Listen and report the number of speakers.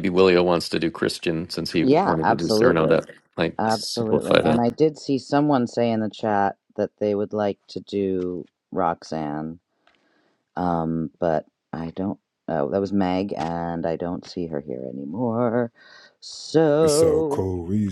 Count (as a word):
three